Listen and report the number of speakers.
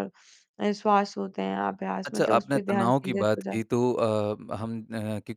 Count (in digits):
2